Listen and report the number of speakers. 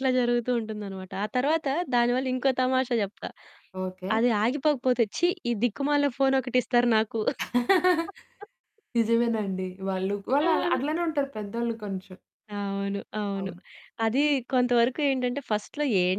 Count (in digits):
2